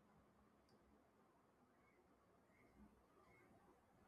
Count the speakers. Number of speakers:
0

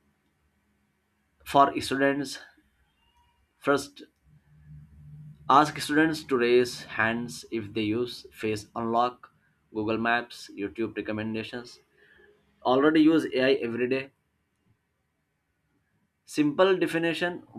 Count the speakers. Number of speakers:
1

